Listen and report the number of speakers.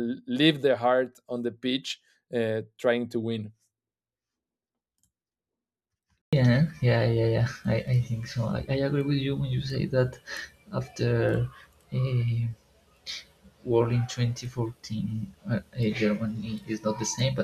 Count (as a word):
two